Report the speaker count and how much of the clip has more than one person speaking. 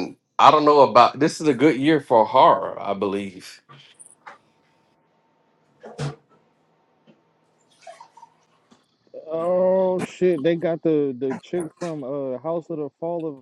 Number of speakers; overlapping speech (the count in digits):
2, no overlap